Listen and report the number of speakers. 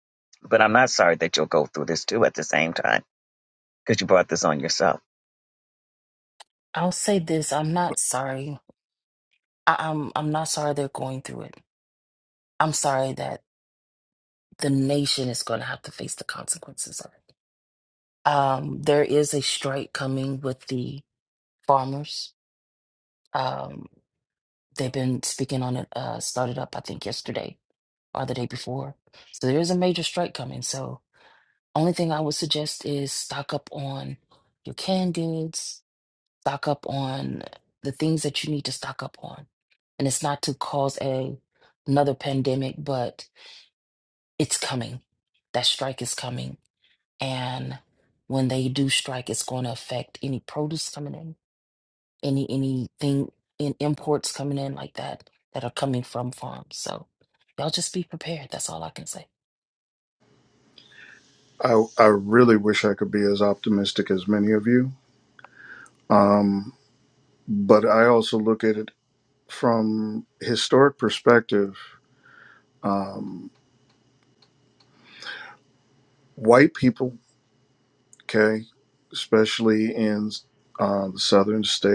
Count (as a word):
three